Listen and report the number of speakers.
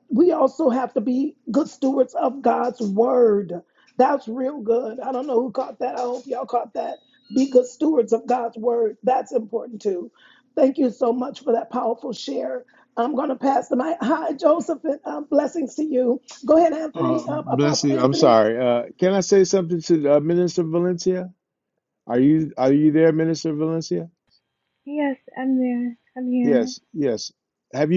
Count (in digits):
3